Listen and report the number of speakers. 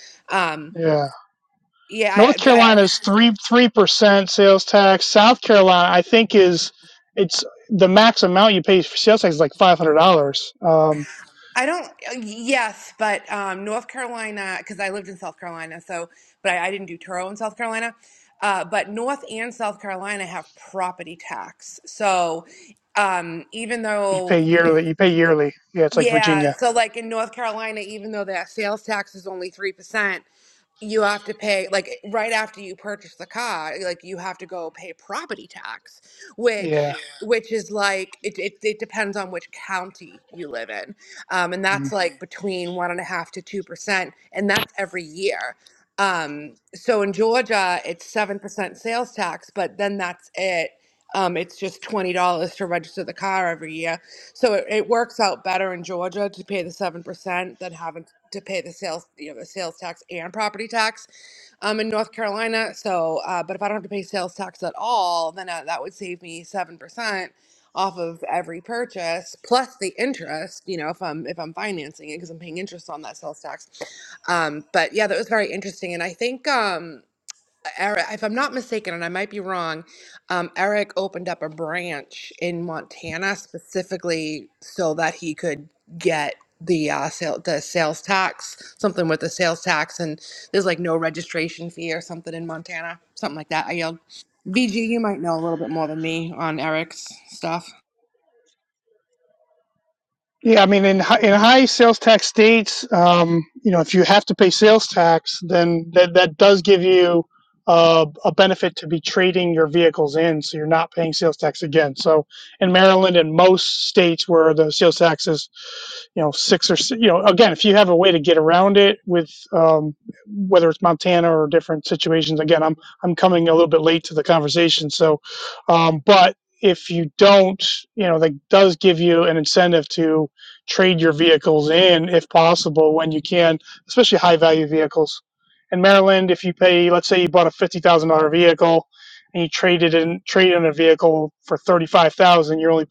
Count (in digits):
2